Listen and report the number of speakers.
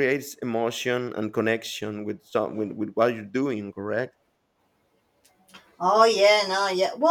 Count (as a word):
two